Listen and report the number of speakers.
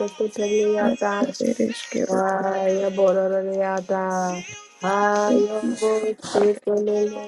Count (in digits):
2